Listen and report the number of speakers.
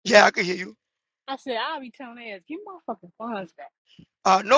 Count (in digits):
2